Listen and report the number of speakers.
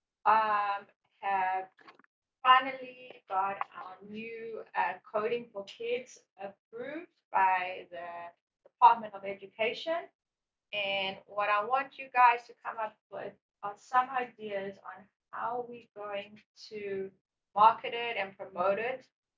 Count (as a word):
one